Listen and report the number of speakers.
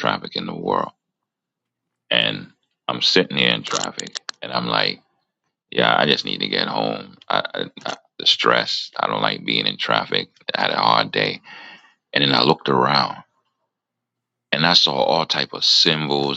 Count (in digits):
1